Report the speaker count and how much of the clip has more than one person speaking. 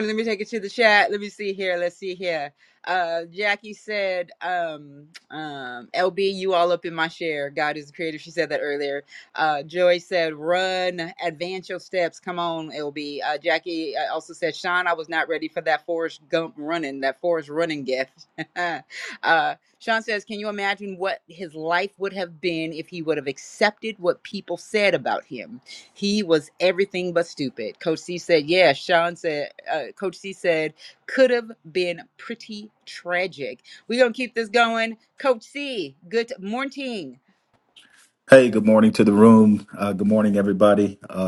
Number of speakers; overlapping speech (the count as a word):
two, no overlap